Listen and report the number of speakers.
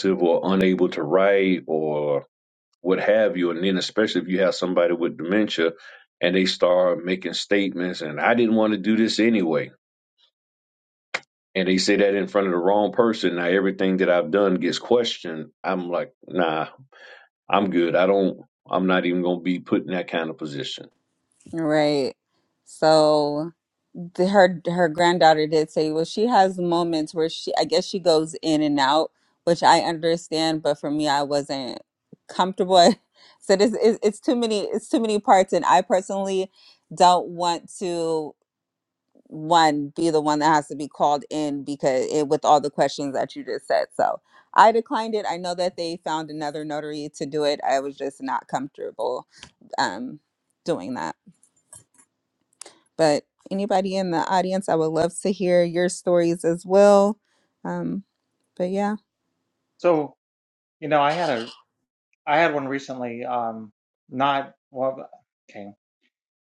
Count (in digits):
3